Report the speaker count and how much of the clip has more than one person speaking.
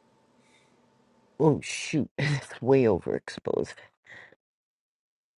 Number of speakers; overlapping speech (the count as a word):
one, no overlap